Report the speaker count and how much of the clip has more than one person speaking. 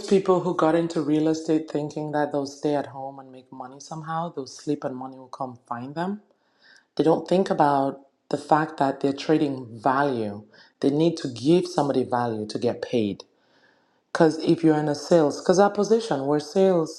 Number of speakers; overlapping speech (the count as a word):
one, no overlap